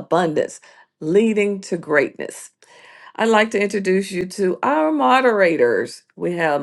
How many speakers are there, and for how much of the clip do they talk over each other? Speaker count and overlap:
1, no overlap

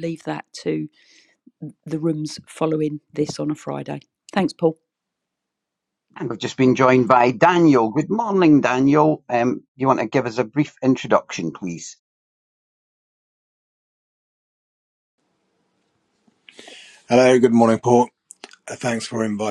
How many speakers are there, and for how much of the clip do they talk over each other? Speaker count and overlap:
3, no overlap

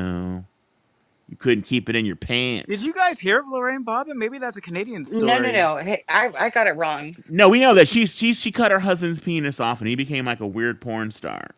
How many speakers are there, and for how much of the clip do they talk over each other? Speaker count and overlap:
3, about 4%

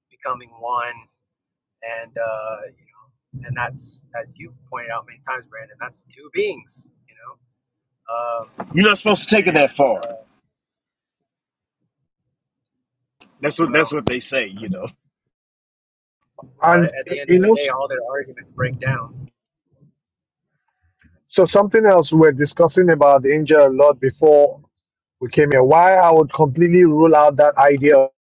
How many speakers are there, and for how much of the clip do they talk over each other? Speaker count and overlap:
3, about 7%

